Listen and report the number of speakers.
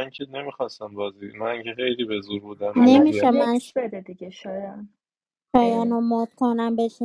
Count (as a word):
three